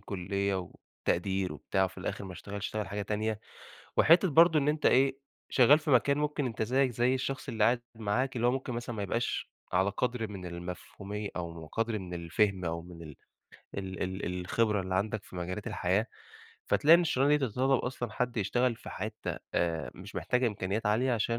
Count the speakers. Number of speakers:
1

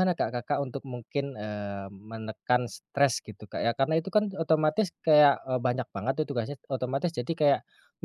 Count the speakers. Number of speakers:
1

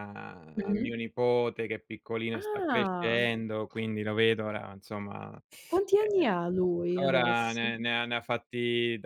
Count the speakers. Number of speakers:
2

